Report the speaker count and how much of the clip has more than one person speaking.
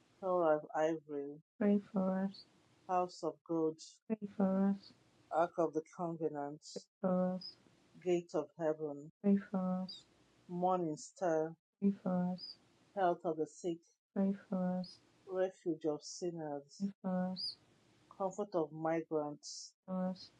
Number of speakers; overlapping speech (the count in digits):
2, no overlap